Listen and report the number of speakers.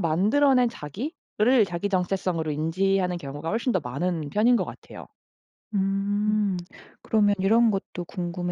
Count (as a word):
two